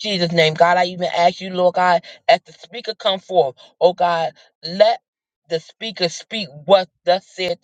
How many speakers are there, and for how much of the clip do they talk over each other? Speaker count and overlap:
1, no overlap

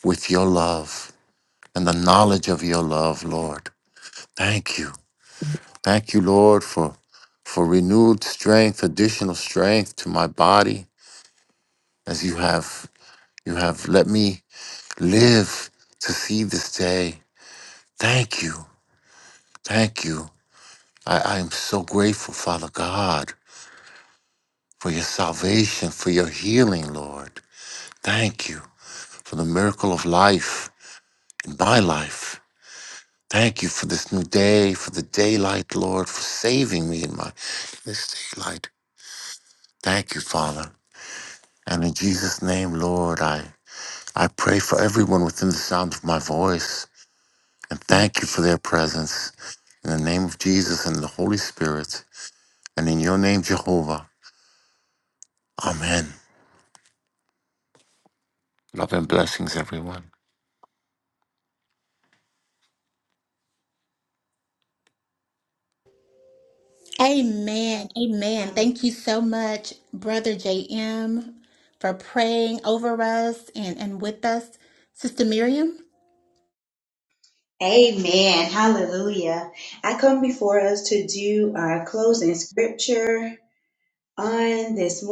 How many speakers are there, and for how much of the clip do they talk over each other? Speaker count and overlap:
3, under 1%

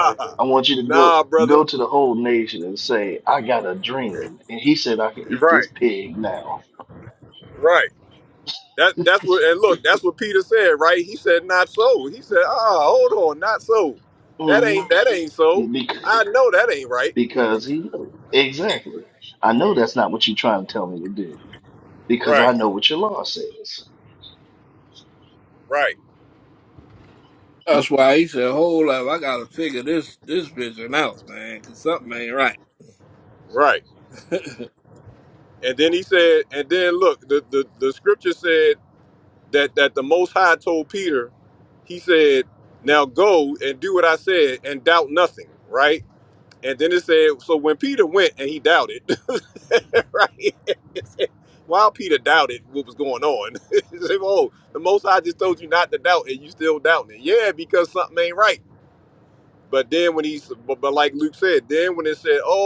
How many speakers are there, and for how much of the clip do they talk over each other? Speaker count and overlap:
3, about 3%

